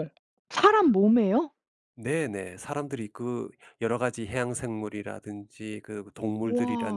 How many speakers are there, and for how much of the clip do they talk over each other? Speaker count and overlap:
2, about 8%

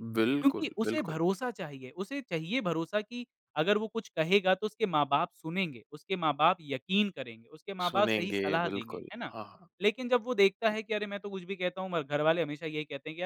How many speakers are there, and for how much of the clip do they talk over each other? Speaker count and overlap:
2, about 17%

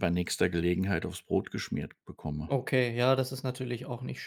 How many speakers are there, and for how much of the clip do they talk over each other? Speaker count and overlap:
2, about 1%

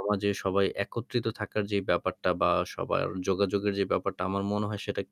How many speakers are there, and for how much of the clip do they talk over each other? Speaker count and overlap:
1, no overlap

